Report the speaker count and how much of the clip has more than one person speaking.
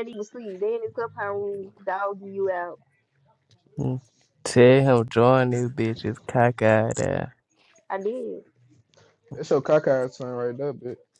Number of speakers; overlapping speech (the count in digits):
3, no overlap